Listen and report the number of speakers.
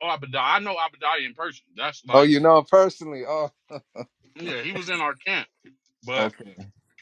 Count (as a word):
two